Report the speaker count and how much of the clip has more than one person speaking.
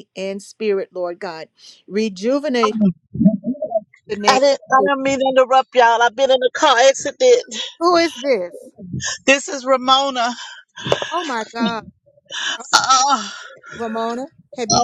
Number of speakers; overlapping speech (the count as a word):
two, about 2%